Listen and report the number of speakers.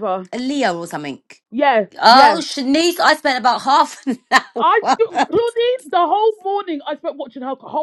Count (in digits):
2